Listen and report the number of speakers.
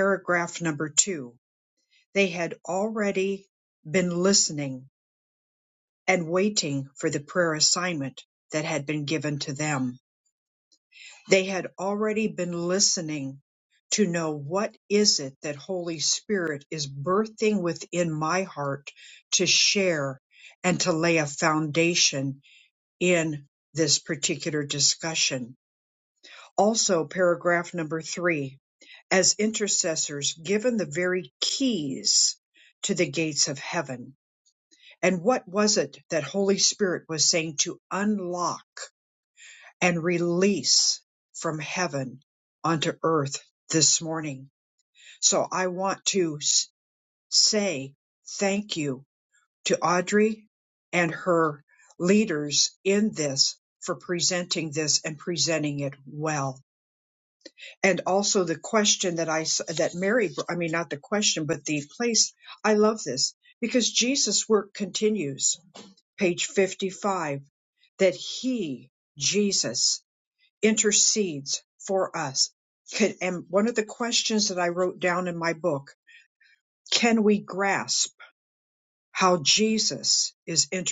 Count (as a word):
one